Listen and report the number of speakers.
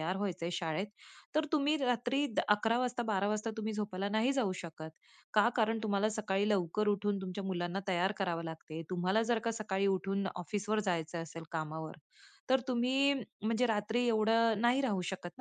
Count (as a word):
one